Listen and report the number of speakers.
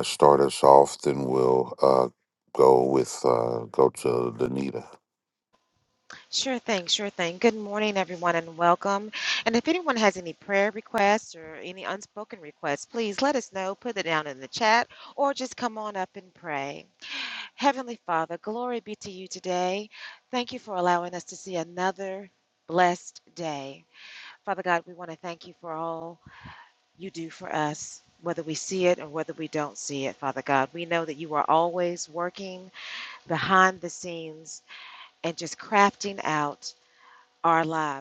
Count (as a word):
two